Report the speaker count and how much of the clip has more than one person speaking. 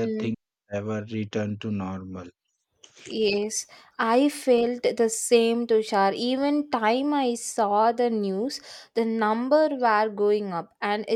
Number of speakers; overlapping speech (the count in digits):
2, about 3%